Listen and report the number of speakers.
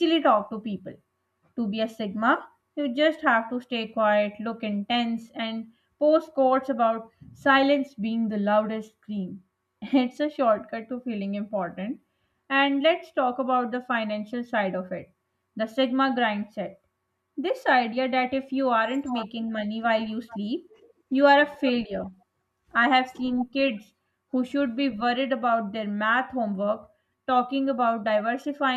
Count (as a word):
one